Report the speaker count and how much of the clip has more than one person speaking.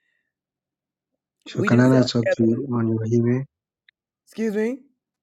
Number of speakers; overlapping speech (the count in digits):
2, about 21%